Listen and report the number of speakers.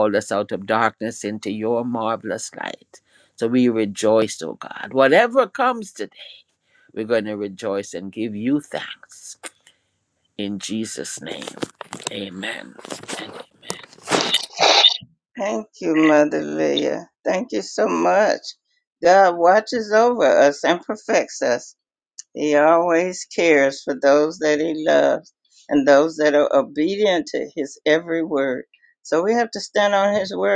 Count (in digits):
2